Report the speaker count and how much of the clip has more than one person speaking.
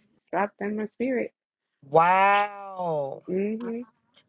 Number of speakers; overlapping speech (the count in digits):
2, no overlap